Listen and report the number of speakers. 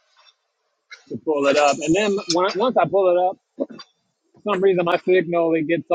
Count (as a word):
one